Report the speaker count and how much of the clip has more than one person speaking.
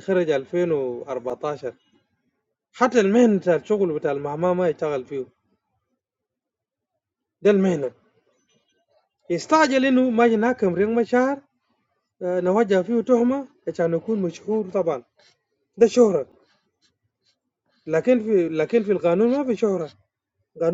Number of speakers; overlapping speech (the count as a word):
one, no overlap